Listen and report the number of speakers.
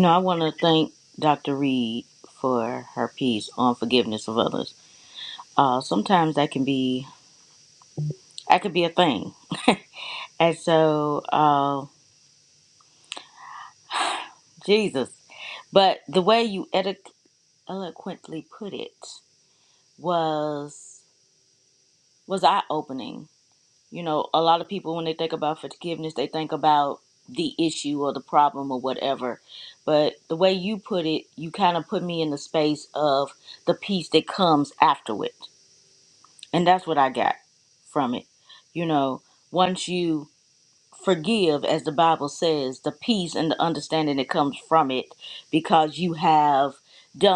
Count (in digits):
1